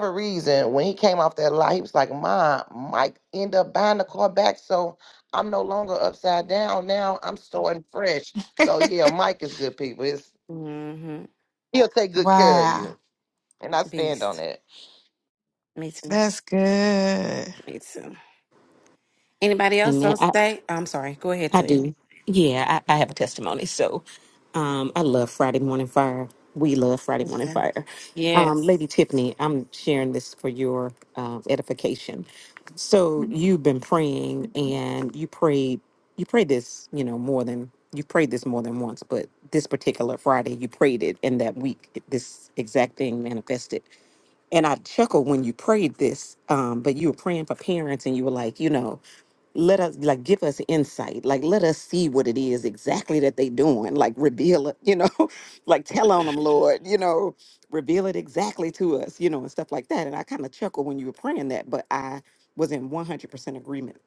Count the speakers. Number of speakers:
4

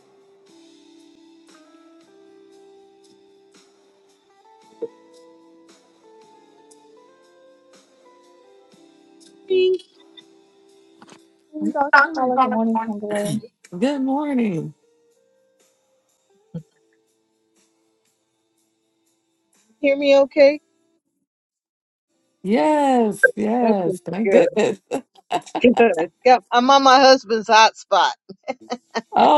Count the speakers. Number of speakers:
3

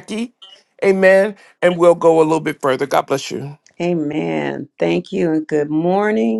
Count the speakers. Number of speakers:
2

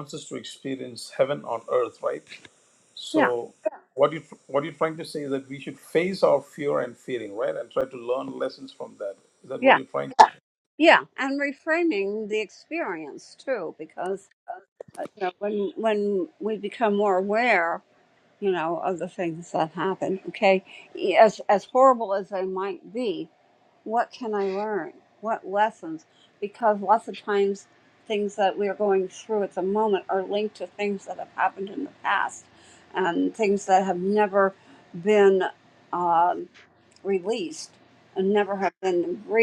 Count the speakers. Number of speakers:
2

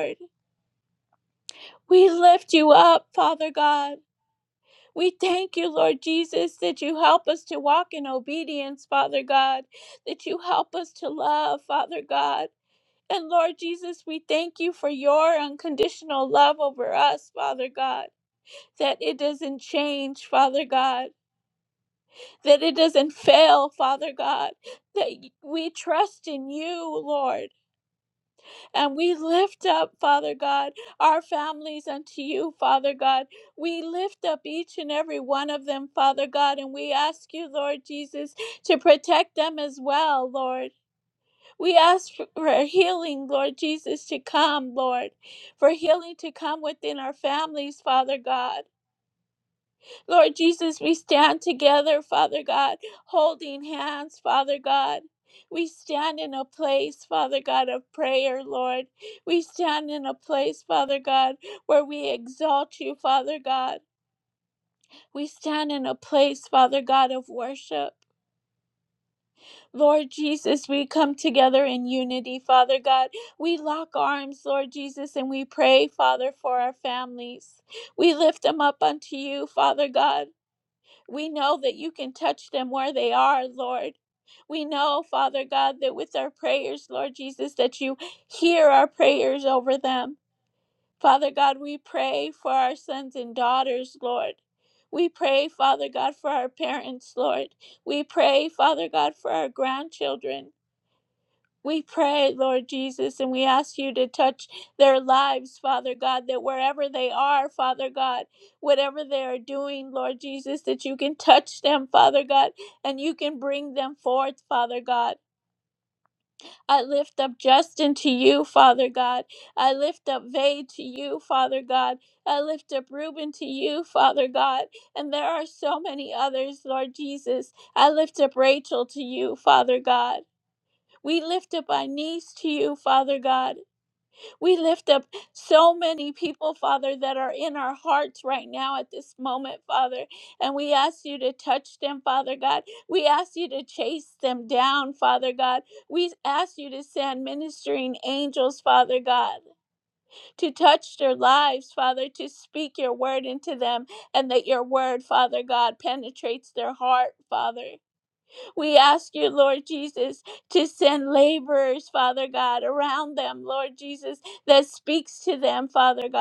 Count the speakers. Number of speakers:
1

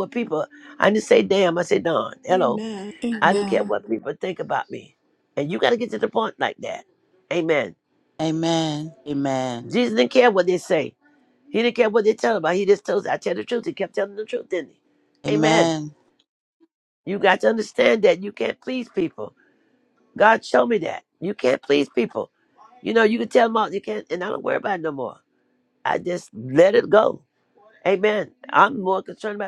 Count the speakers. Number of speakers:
3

